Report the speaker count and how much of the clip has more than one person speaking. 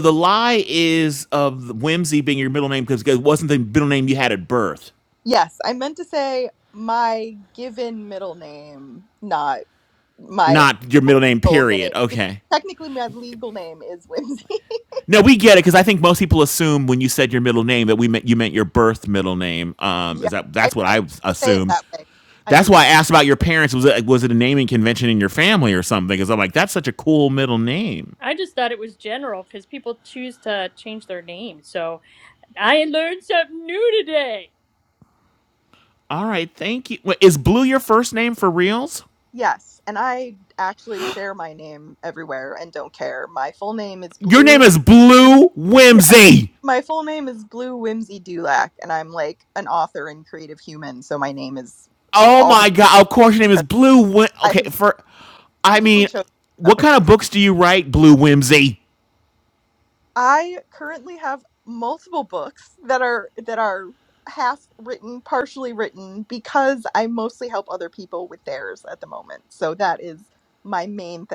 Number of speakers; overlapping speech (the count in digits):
3, about 7%